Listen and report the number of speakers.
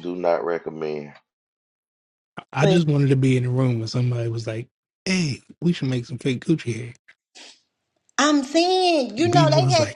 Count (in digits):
3